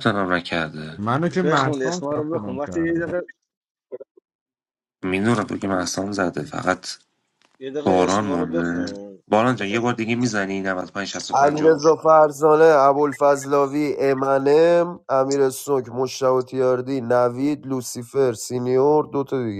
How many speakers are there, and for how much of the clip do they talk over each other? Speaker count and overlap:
four, about 17%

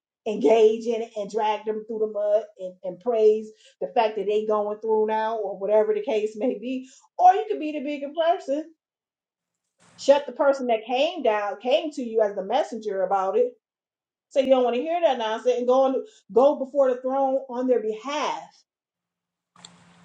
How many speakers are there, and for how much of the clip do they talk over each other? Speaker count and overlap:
one, no overlap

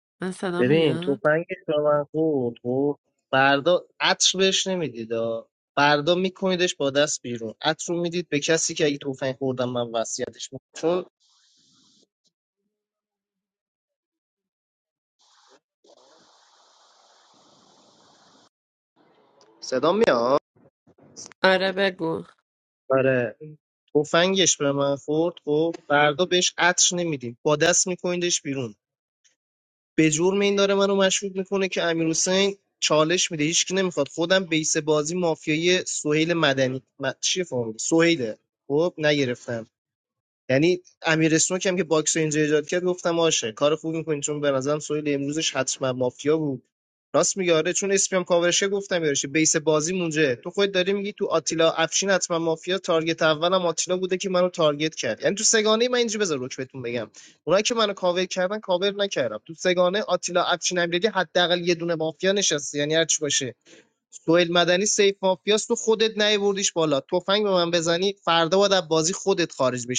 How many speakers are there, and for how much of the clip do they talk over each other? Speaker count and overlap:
two, about 1%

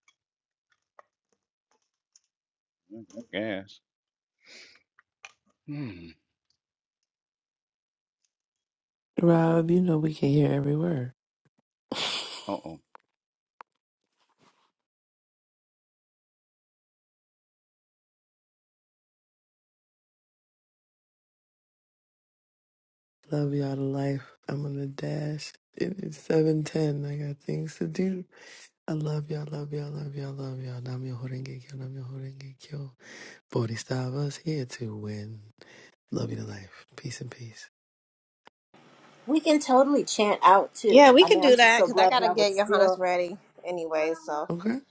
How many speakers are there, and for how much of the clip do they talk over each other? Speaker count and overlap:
four, about 5%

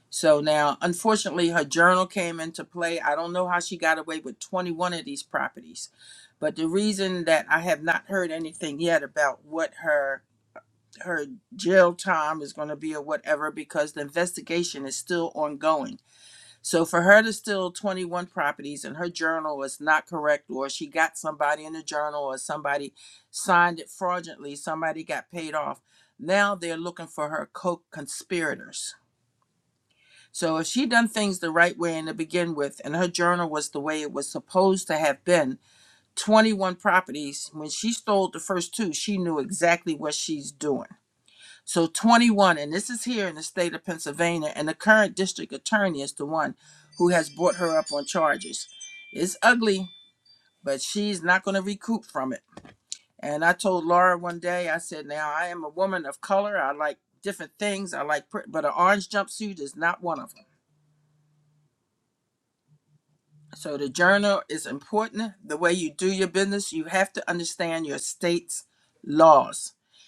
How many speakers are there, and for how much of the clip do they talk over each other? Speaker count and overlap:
one, no overlap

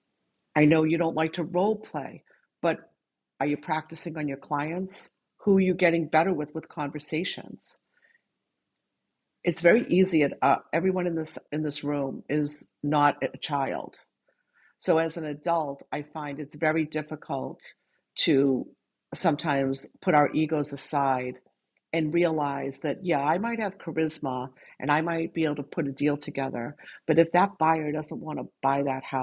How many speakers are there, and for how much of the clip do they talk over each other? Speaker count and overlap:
one, no overlap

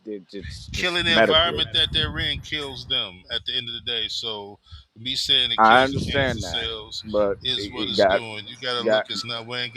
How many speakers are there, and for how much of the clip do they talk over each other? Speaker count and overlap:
two, about 30%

